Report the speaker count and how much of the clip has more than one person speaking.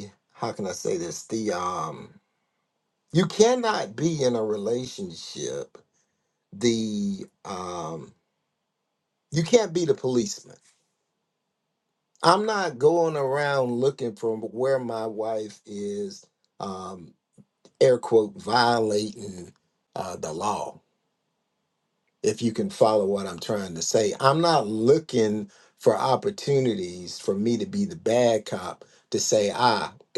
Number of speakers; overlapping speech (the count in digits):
1, no overlap